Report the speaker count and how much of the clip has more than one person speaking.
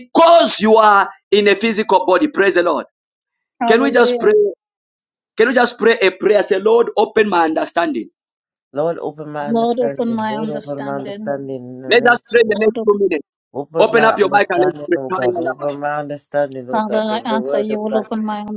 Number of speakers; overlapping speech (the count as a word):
three, about 35%